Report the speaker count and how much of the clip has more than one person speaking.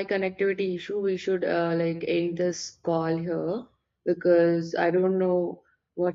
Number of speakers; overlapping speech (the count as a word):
one, no overlap